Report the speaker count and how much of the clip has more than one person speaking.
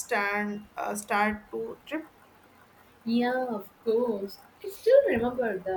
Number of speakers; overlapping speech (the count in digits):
2, no overlap